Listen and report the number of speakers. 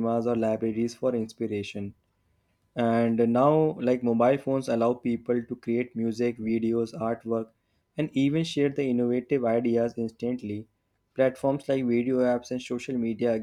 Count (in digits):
1